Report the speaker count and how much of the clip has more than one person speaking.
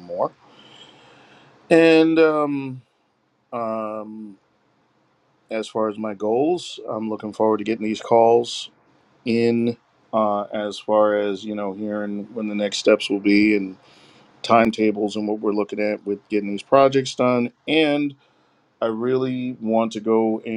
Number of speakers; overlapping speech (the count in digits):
1, no overlap